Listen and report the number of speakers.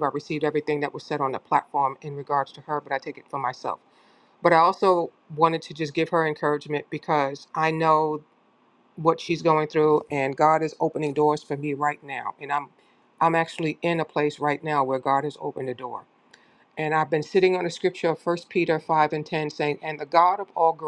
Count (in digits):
1